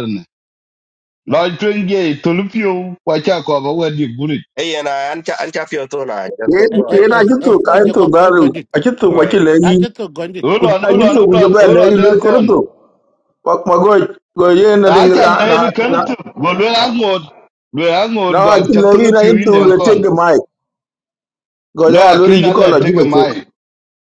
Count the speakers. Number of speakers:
4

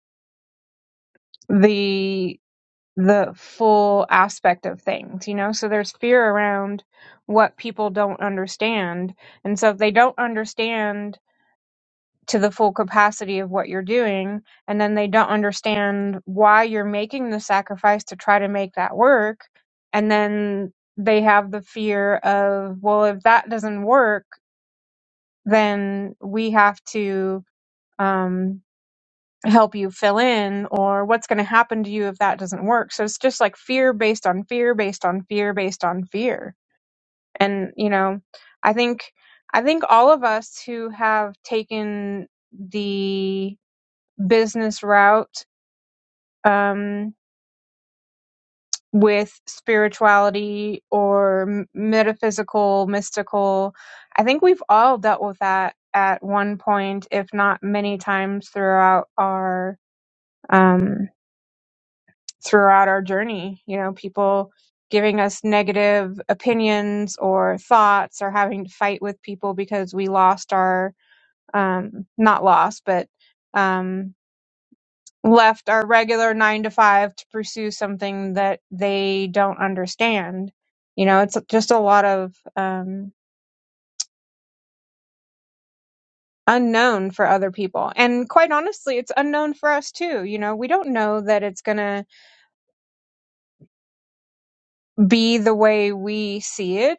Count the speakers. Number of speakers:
1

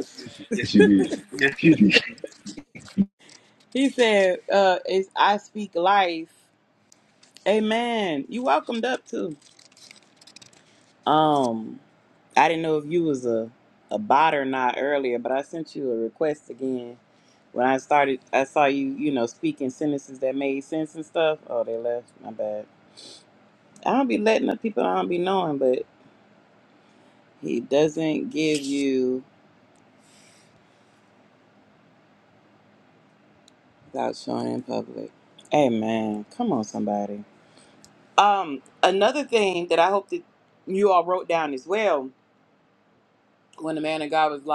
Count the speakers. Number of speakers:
2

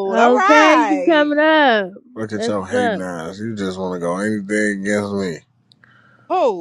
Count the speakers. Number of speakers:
3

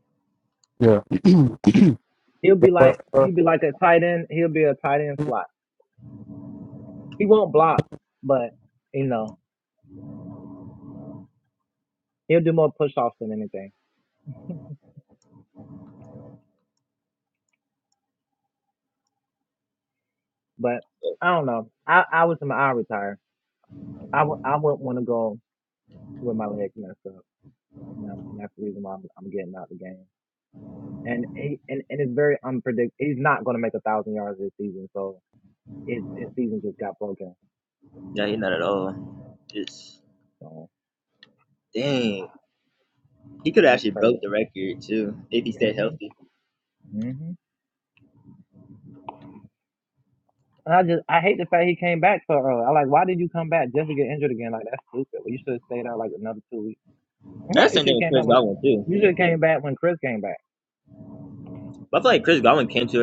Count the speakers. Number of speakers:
3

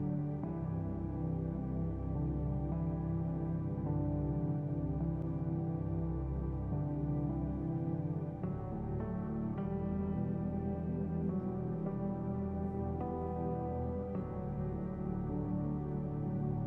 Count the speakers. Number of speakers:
0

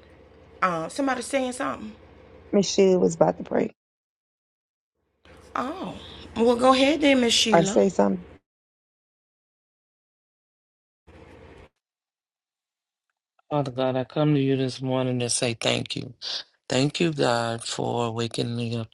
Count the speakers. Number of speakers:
3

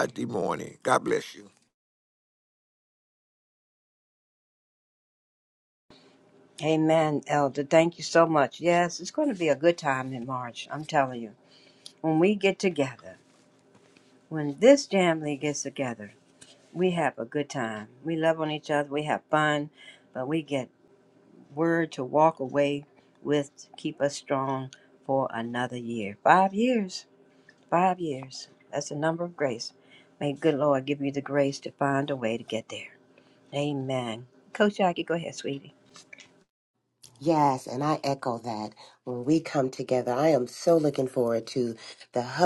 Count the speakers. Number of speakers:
3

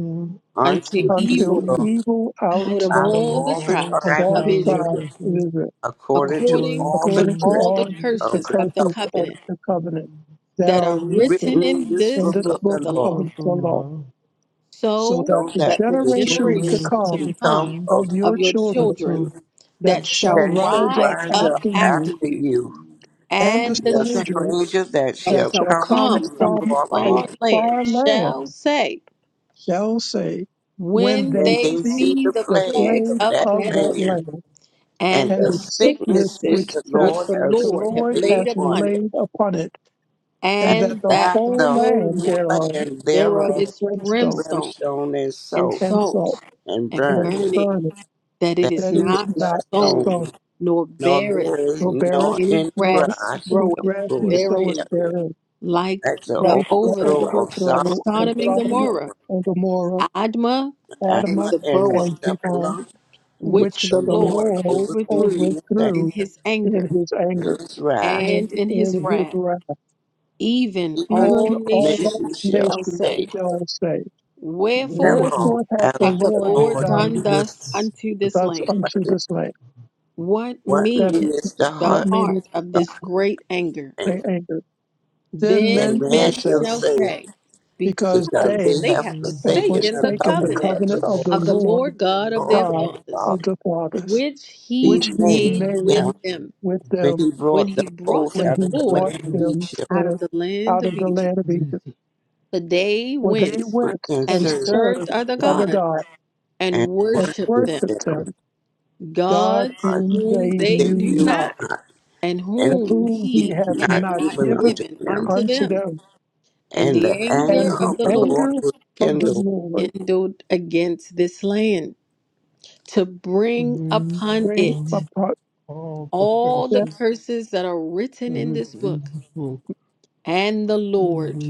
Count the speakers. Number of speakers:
4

